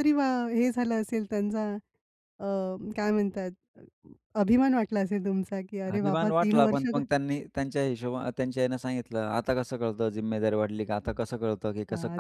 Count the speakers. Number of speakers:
two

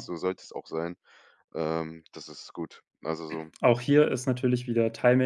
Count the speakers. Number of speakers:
two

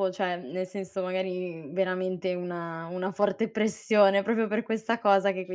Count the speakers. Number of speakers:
one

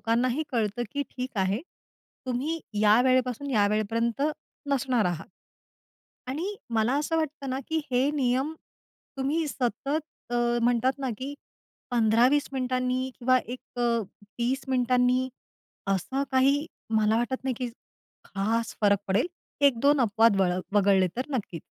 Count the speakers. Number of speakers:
one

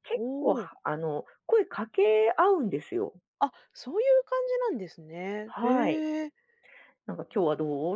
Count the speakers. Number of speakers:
two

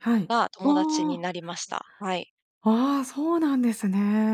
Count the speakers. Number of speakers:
two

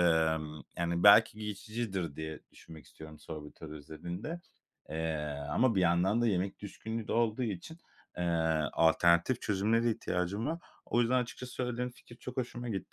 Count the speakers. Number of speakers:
one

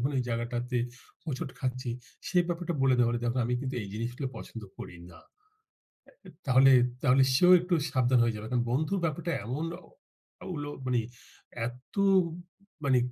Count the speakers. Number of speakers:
one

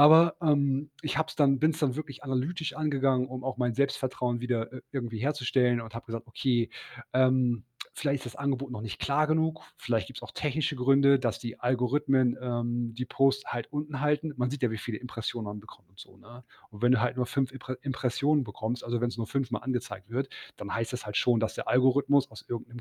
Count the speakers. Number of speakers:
one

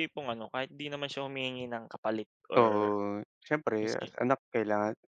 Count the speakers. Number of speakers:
two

